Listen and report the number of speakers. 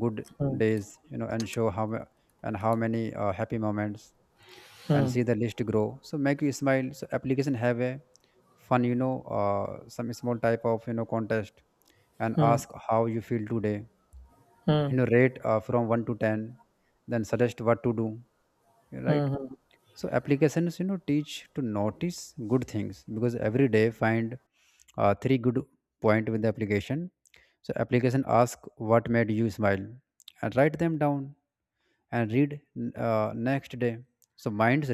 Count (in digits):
2